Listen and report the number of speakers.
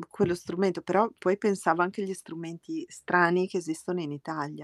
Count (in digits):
1